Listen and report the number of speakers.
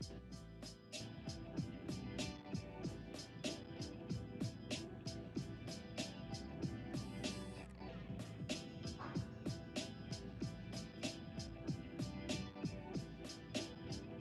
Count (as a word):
zero